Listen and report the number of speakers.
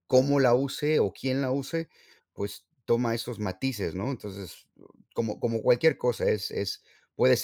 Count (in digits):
1